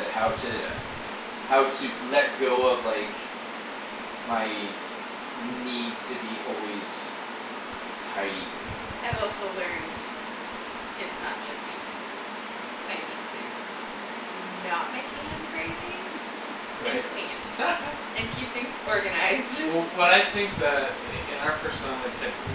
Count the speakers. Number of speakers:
three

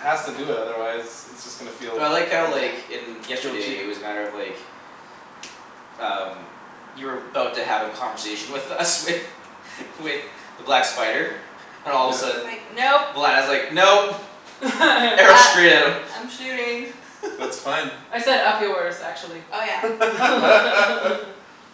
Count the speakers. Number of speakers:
four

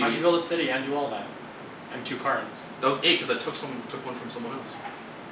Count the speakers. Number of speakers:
two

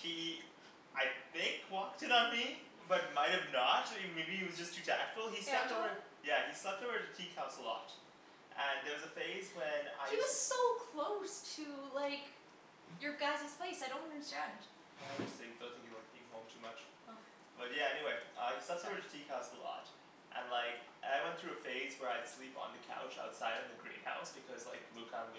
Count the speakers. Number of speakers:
two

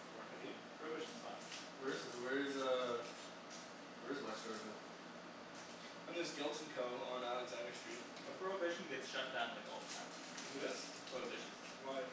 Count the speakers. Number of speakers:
three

